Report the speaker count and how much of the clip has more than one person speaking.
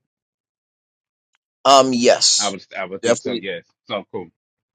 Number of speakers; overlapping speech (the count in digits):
2, about 11%